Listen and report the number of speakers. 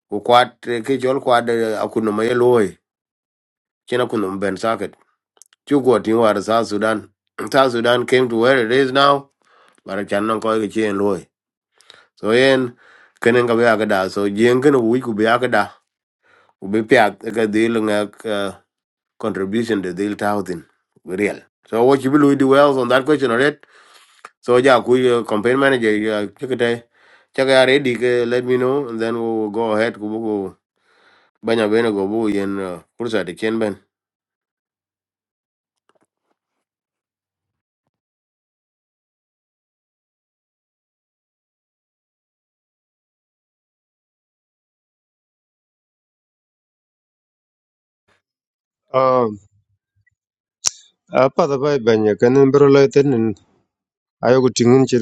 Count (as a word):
two